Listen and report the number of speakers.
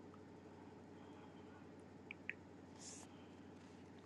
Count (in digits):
0